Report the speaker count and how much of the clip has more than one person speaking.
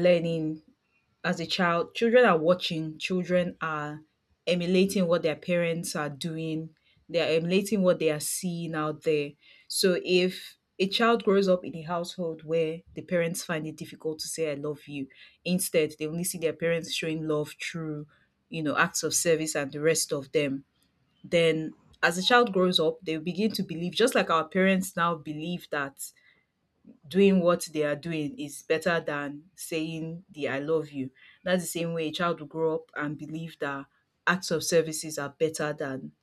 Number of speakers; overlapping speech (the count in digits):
1, no overlap